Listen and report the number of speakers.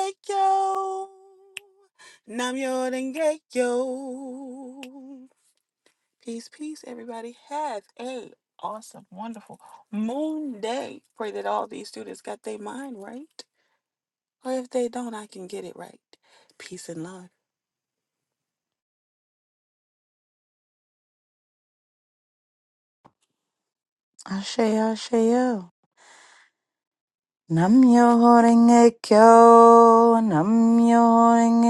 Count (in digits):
2